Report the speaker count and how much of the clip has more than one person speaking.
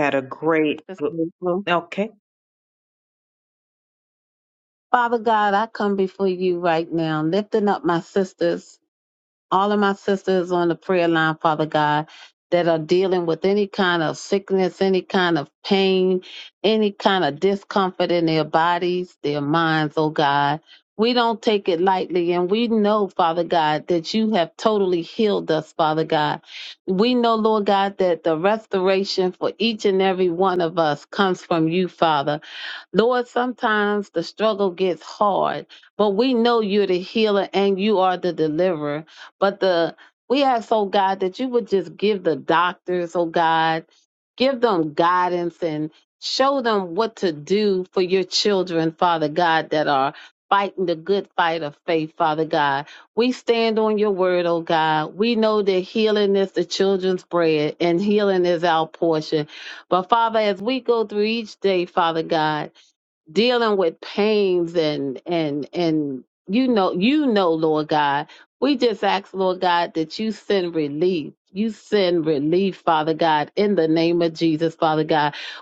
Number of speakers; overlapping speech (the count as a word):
two, no overlap